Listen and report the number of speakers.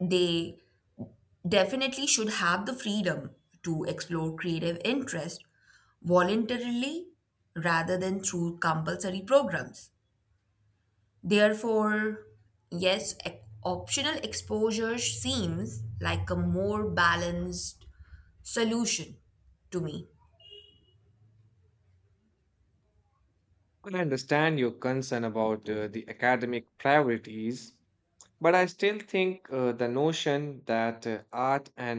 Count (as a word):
two